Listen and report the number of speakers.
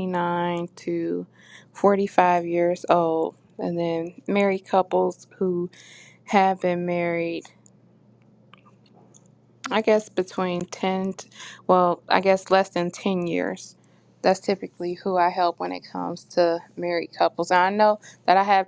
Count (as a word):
one